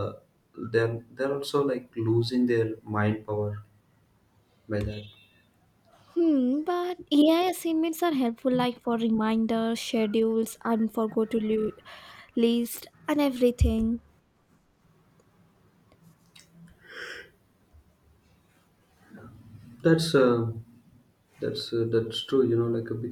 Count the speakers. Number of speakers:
2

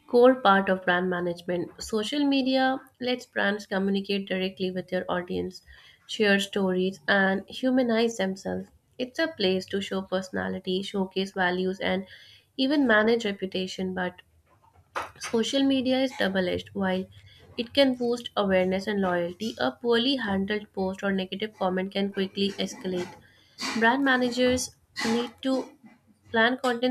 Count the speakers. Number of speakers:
1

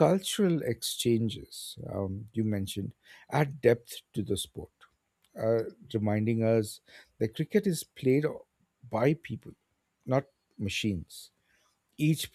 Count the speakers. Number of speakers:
1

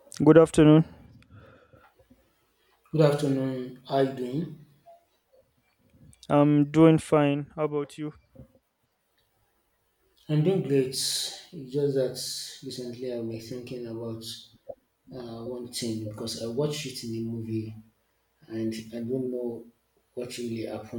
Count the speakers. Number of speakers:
2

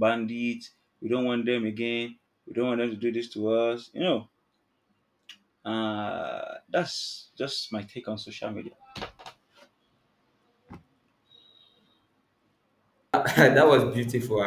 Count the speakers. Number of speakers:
2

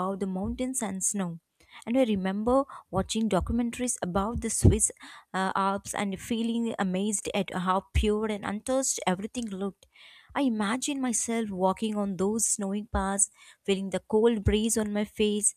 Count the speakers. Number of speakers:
1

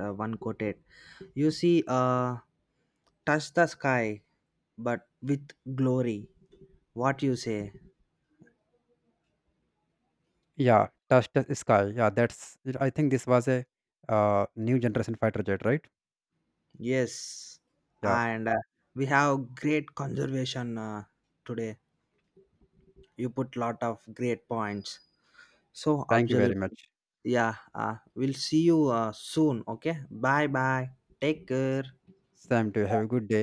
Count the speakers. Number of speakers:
2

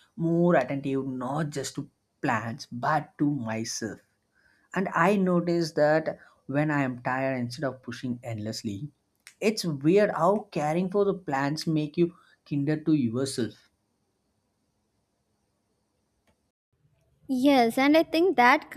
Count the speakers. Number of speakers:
2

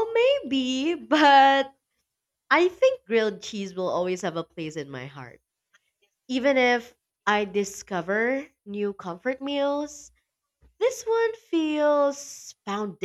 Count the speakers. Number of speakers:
1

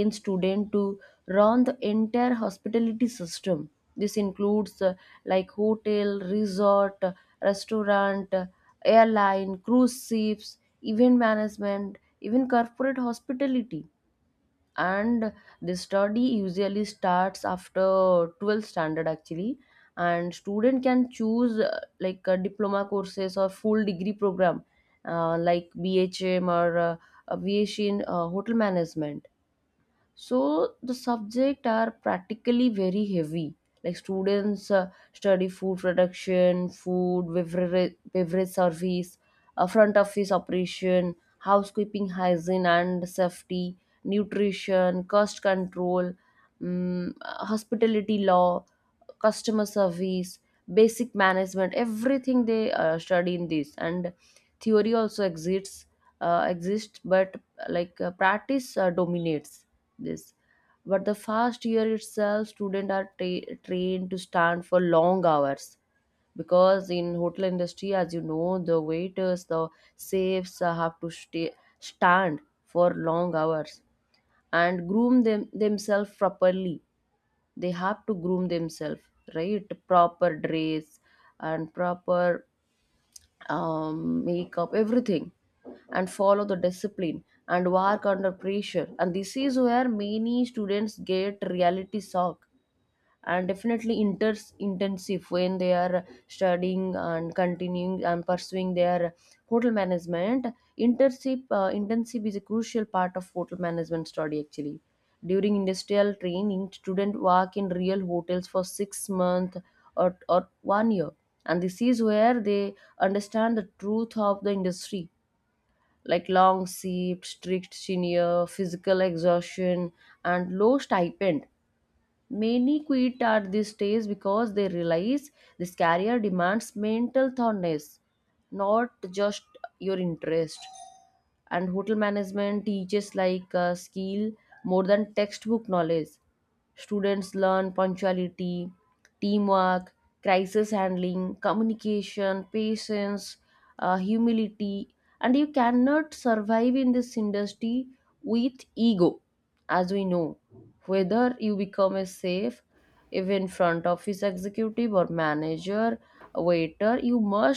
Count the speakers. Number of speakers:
1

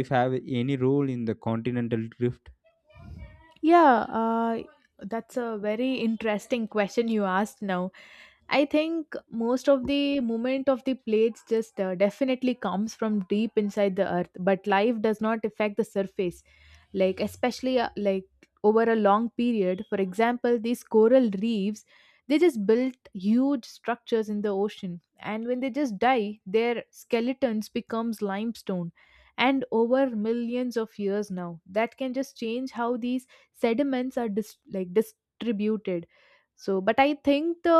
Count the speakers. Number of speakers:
2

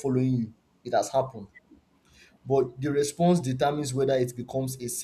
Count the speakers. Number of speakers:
1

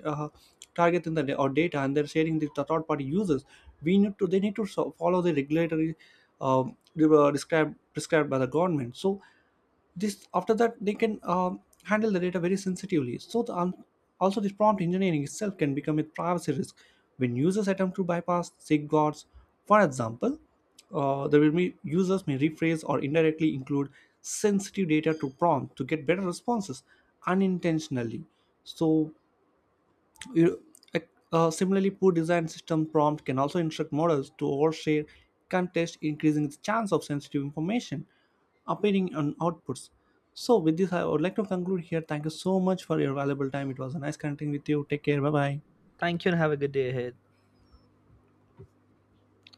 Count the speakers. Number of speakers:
2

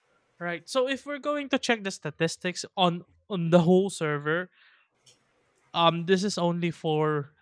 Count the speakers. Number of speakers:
1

